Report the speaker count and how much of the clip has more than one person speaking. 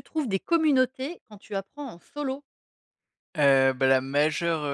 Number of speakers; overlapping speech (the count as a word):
two, no overlap